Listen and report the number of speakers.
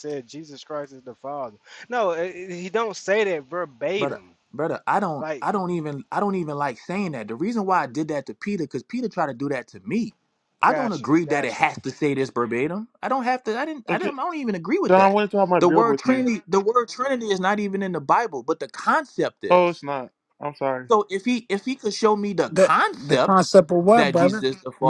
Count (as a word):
four